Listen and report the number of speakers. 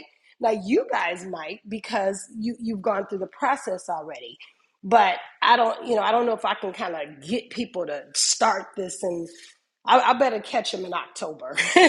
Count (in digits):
1